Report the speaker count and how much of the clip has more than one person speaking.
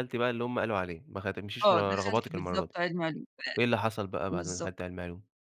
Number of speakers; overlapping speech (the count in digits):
2, about 26%